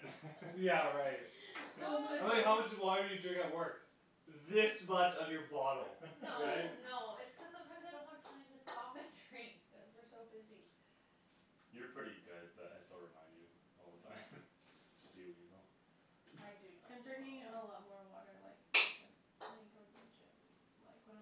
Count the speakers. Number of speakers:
4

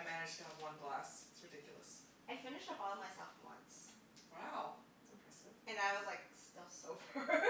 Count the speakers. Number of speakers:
2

